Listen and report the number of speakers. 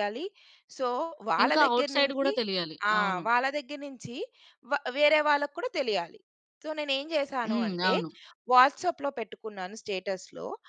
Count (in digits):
2